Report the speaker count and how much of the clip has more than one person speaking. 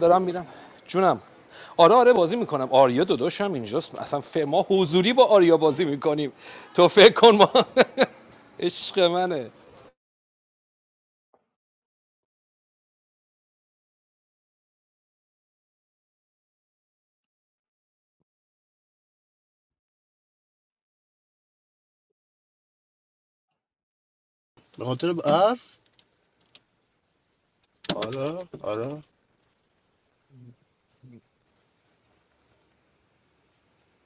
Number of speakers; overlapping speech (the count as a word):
two, no overlap